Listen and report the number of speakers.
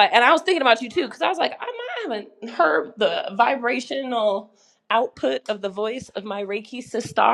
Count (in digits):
1